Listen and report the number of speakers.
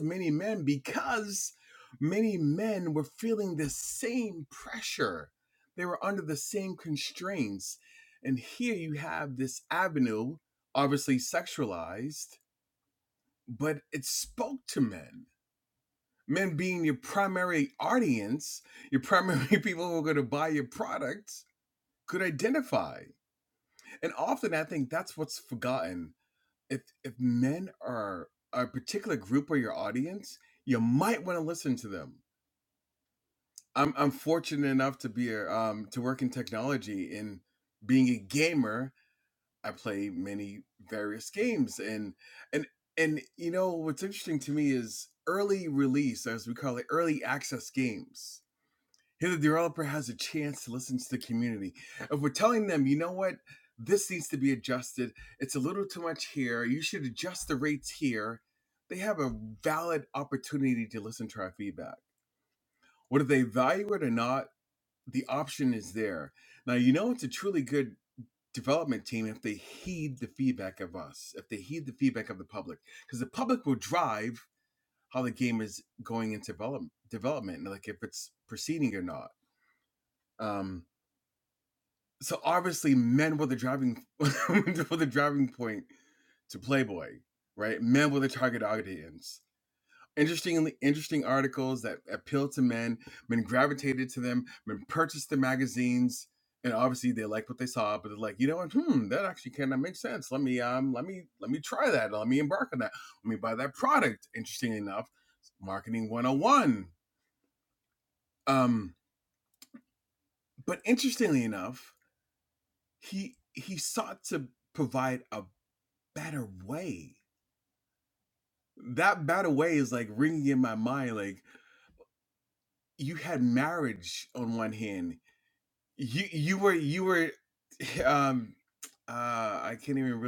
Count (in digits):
1